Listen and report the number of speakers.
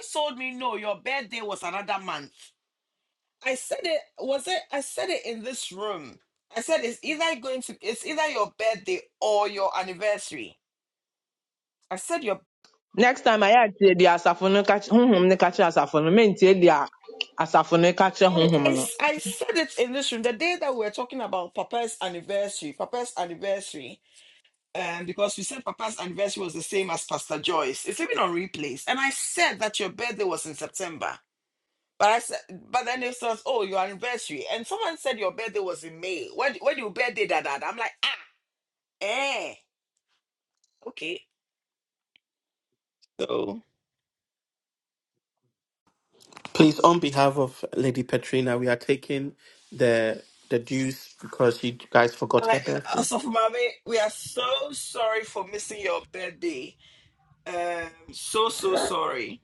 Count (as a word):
three